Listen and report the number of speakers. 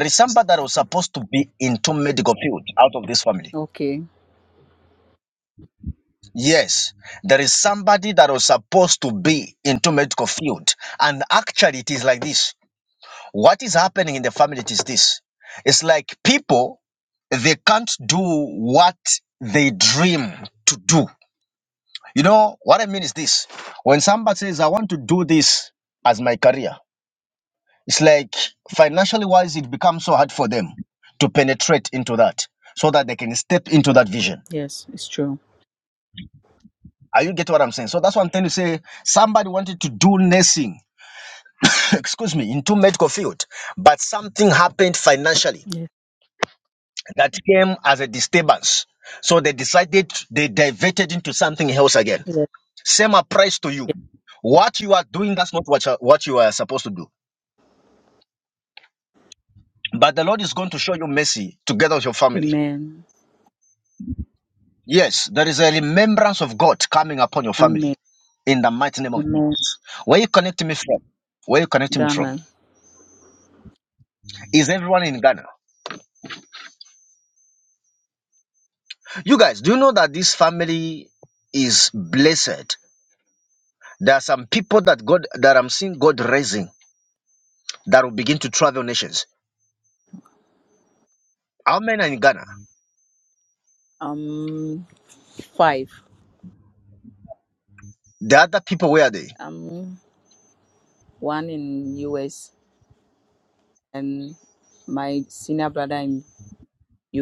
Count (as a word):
two